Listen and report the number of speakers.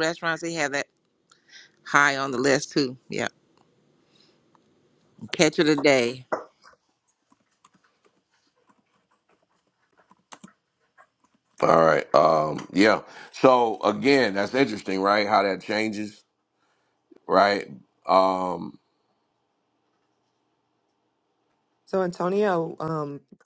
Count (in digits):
3